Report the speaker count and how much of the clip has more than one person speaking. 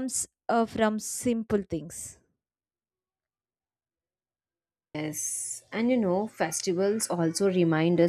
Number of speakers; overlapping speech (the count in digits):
2, no overlap